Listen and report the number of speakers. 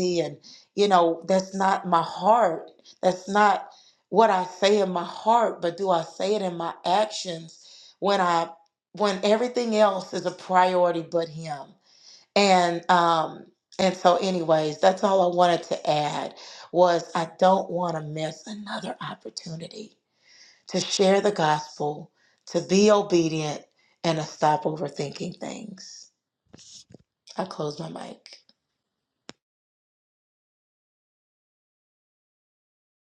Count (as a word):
one